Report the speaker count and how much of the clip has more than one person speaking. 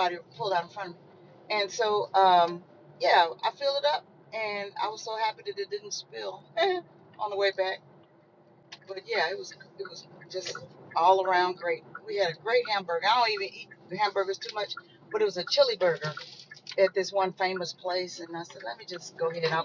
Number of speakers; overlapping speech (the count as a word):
one, no overlap